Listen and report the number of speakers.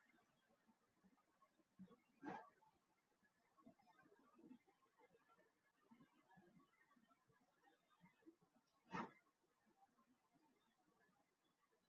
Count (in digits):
0